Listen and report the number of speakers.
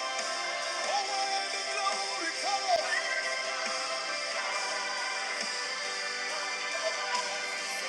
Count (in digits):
0